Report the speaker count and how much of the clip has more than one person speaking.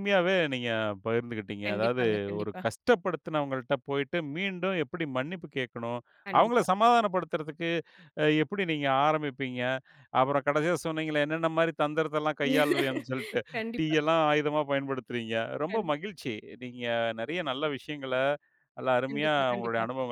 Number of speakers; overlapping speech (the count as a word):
two, about 12%